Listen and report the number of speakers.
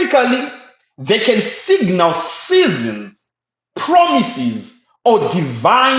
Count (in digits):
1